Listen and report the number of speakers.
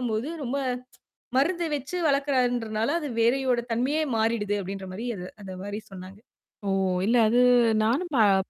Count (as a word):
two